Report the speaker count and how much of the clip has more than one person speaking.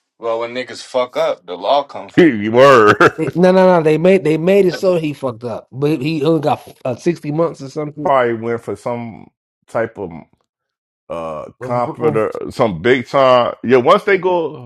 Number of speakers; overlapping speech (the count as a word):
three, about 2%